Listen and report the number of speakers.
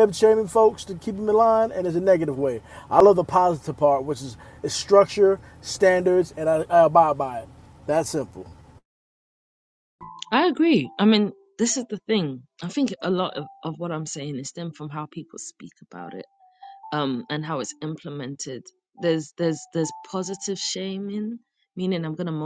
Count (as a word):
two